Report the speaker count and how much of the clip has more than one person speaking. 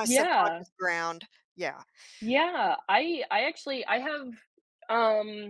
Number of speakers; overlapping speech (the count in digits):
2, about 11%